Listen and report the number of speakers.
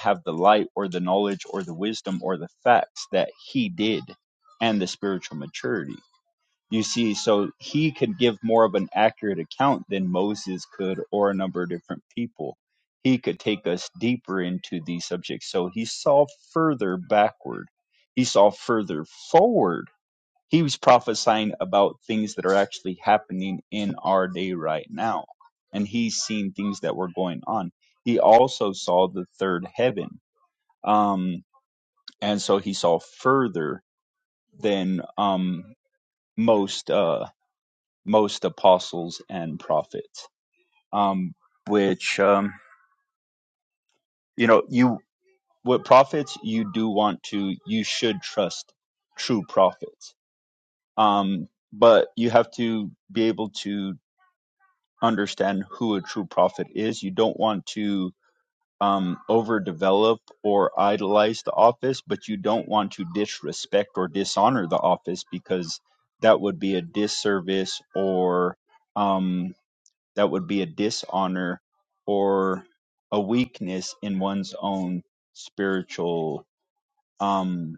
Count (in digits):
1